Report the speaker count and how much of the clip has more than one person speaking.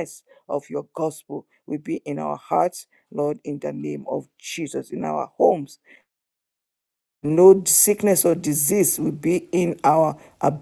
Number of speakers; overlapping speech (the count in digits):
1, no overlap